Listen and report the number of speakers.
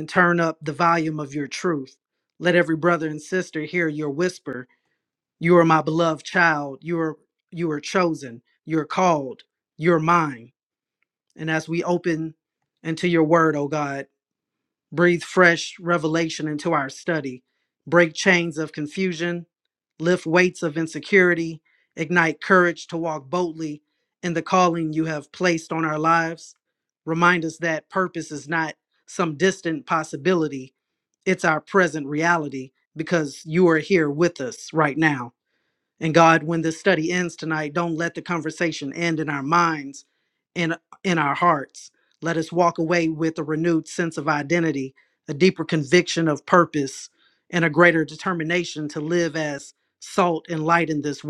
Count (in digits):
1